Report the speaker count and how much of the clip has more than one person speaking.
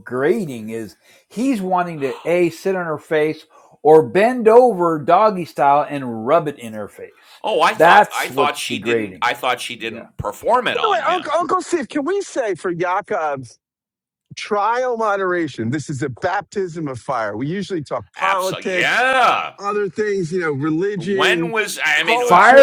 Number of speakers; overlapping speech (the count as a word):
three, about 18%